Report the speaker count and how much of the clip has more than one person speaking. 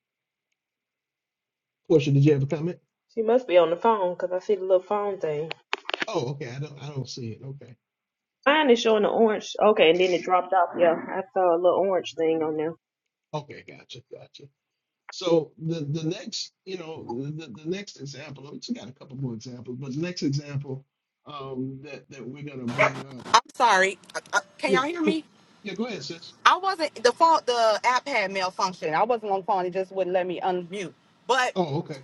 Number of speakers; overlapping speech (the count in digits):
3, about 2%